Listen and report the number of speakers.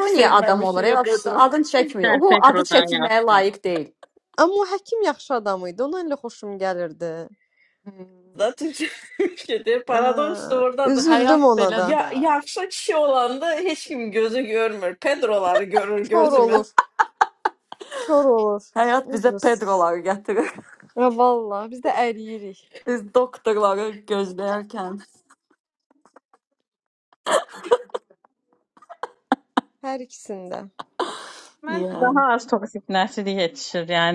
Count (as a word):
five